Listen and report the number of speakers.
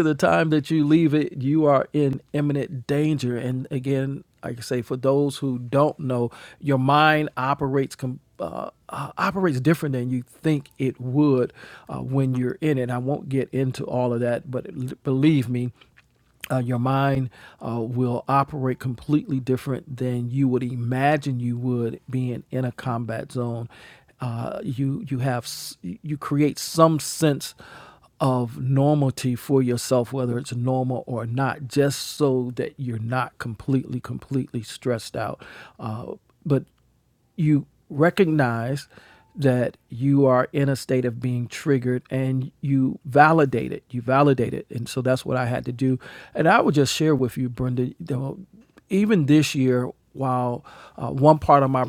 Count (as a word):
one